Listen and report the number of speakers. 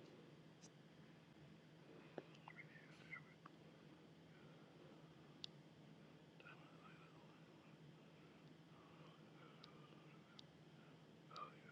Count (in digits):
0